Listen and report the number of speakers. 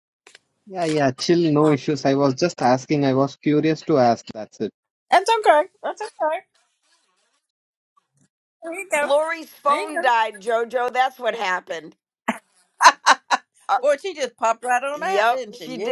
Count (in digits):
3